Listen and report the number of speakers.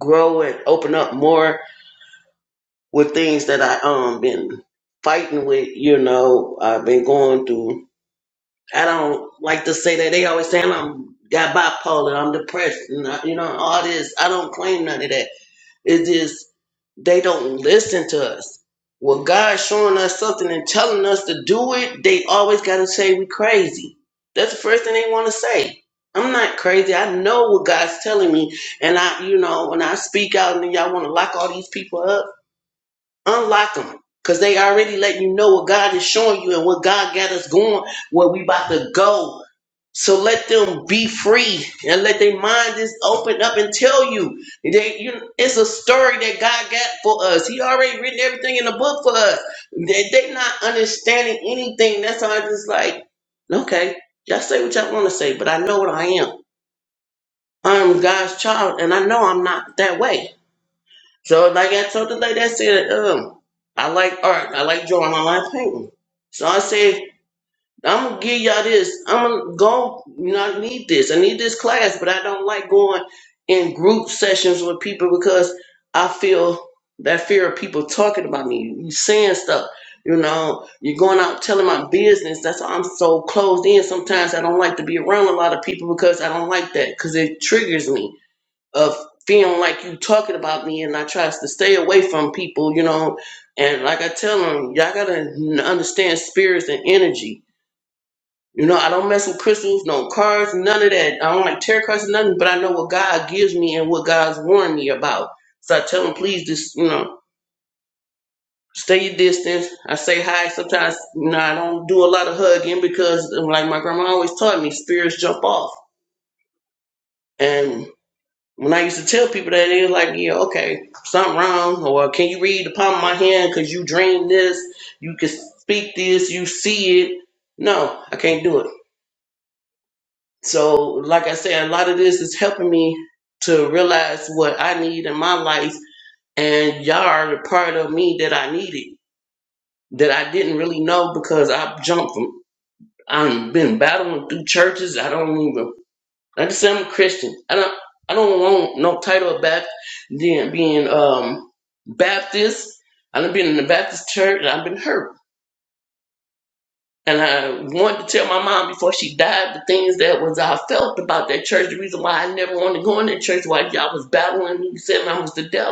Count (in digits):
1